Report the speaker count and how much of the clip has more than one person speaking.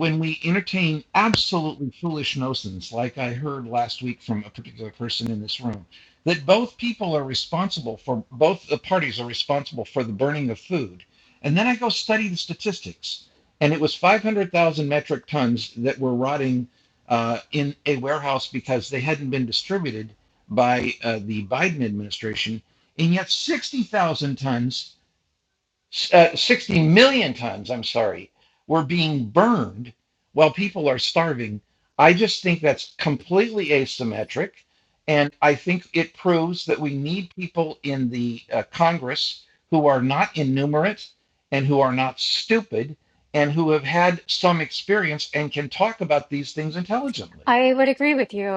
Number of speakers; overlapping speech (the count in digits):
2, no overlap